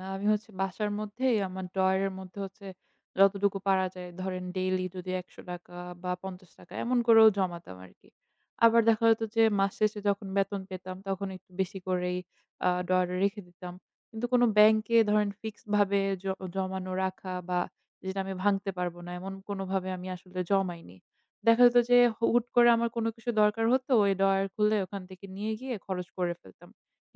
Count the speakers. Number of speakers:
one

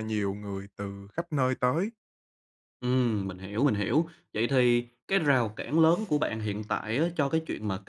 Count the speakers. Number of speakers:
two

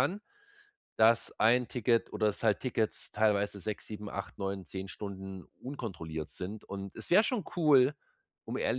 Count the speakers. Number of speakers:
one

